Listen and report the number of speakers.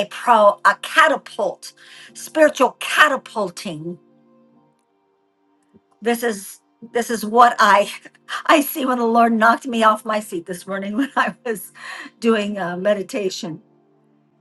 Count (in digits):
1